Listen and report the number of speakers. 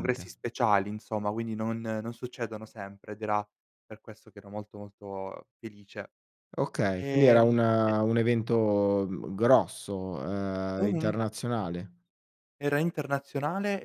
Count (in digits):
2